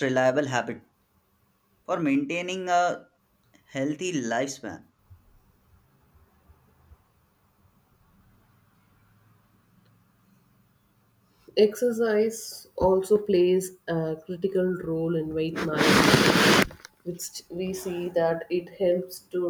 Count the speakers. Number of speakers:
2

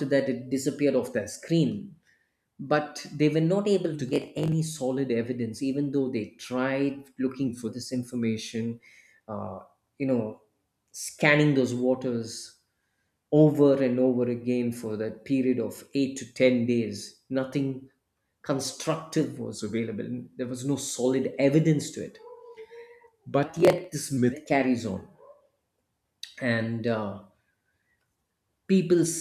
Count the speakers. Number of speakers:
1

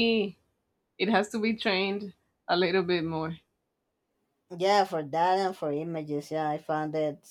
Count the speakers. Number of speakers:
2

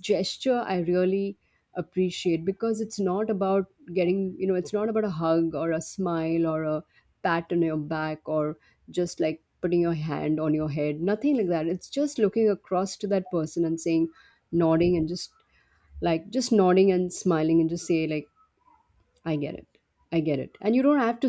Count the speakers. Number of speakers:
1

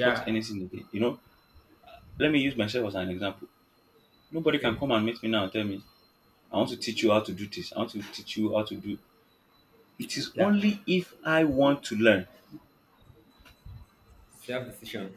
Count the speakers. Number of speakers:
2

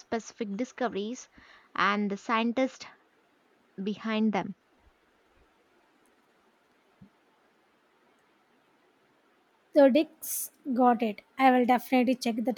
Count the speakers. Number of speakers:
2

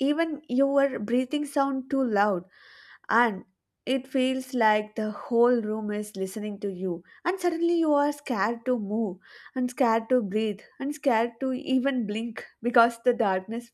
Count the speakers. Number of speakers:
1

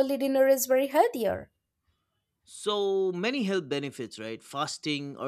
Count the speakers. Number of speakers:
2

